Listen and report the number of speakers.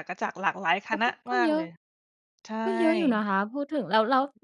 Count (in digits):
2